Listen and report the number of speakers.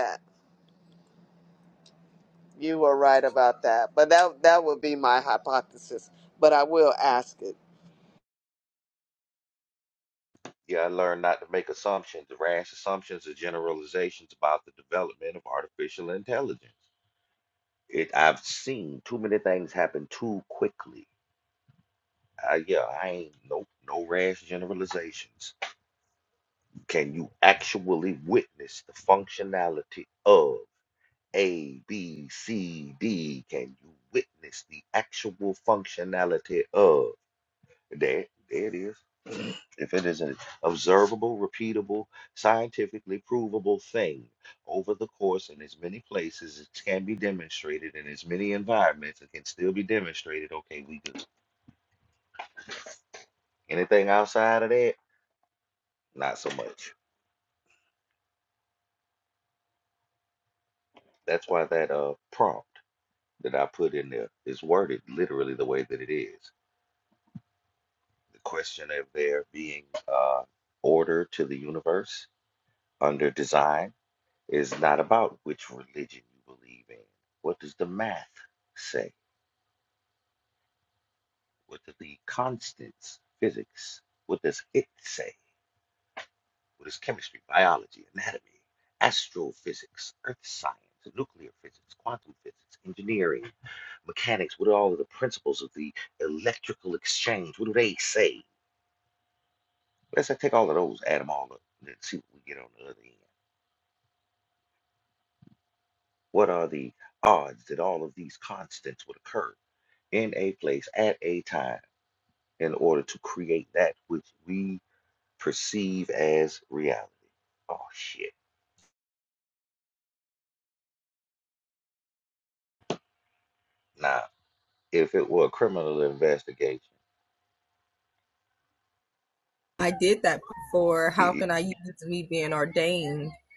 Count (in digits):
3